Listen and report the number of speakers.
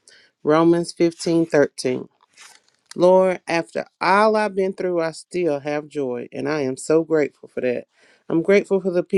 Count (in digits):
1